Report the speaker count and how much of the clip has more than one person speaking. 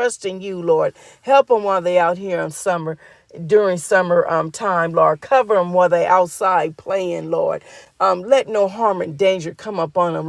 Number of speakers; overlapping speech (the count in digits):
1, no overlap